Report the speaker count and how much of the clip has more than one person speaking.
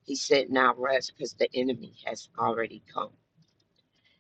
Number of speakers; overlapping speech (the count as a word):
one, no overlap